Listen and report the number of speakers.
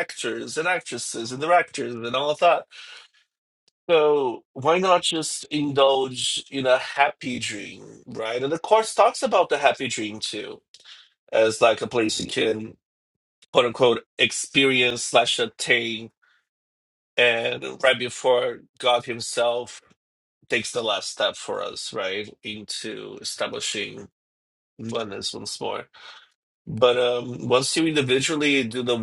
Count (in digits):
1